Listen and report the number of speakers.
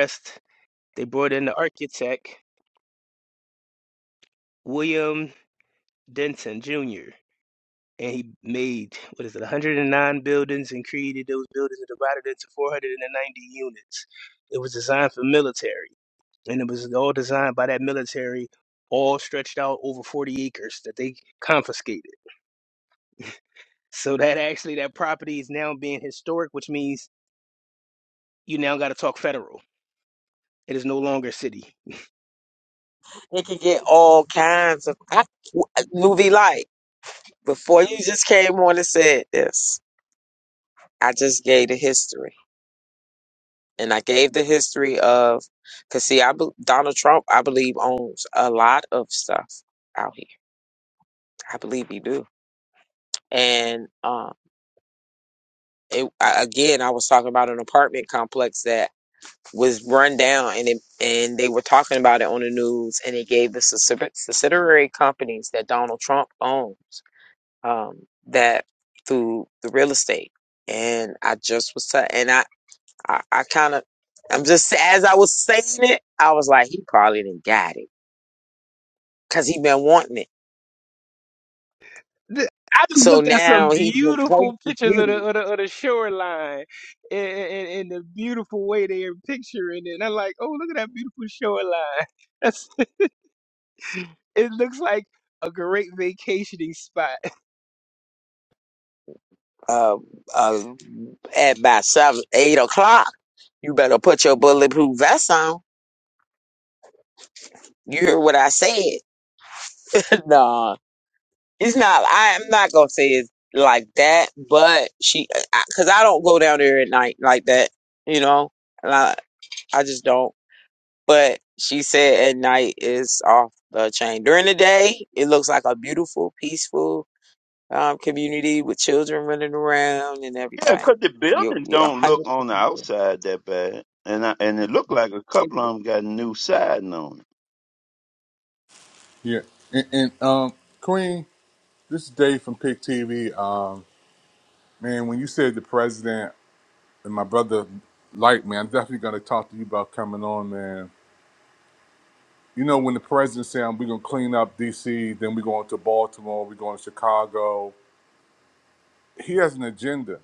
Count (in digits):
4